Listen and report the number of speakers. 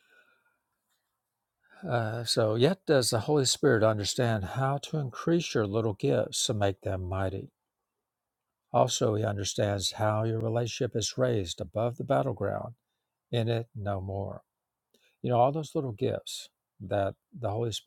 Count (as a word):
one